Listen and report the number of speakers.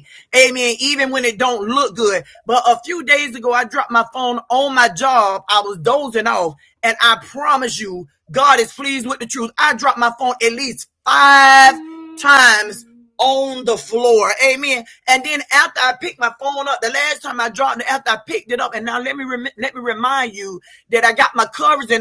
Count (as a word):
one